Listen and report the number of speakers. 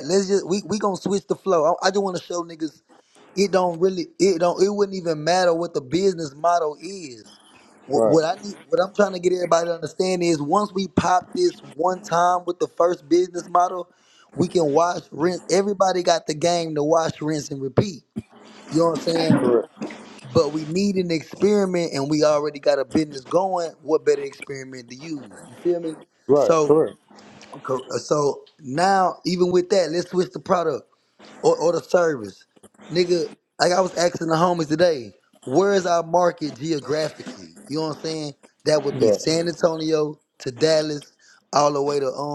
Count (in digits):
2